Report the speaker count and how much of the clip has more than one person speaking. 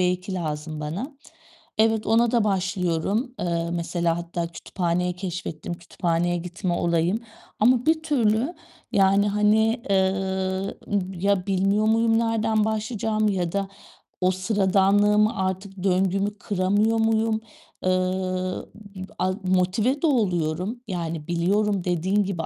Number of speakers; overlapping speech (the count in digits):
1, no overlap